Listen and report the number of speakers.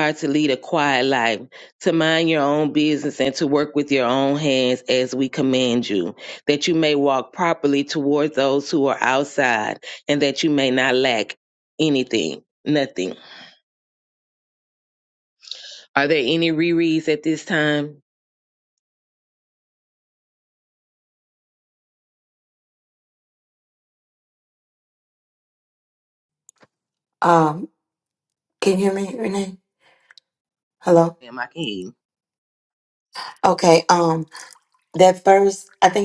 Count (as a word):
two